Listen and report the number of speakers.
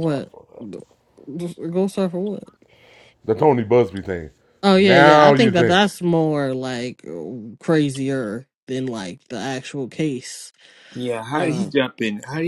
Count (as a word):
three